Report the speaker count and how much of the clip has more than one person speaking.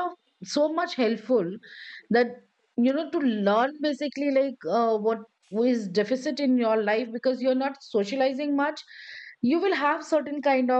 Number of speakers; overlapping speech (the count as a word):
one, no overlap